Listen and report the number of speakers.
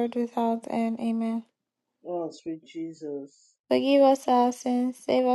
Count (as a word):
two